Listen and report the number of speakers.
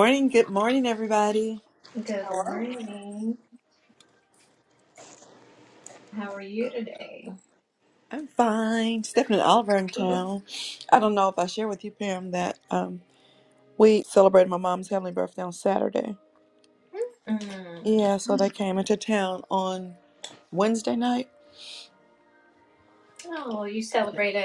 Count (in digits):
2